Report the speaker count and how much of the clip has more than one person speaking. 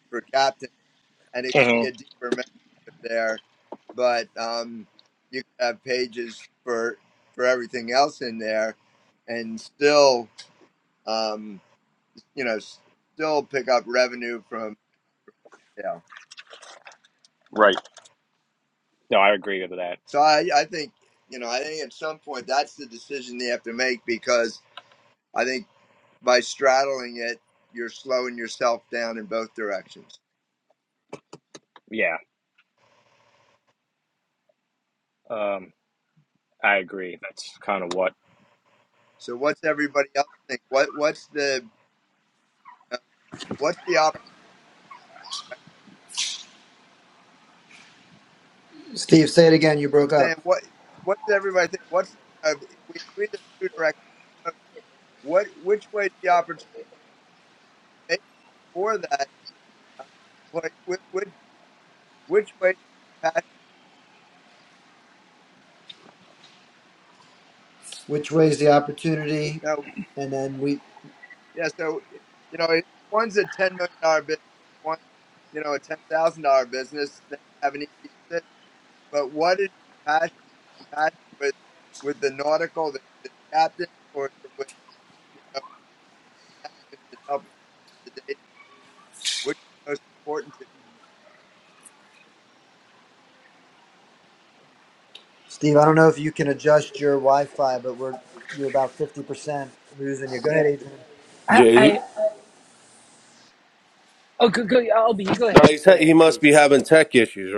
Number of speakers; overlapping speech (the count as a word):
five, about 2%